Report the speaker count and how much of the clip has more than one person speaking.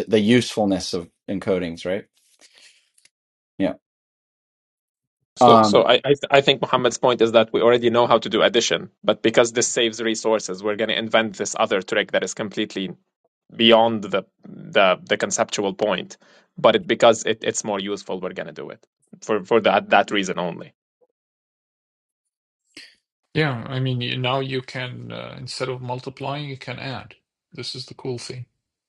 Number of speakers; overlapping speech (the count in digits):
3, about 1%